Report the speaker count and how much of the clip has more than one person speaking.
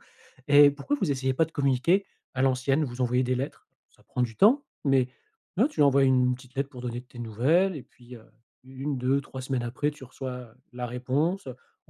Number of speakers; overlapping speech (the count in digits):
1, no overlap